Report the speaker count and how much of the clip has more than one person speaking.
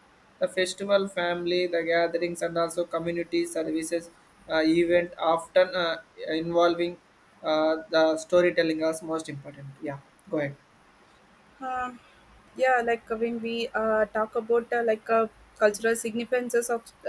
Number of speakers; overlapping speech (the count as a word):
two, no overlap